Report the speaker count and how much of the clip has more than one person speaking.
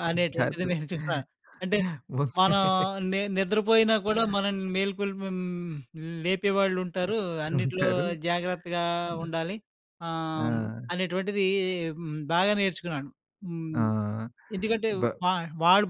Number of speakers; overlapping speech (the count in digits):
2, about 10%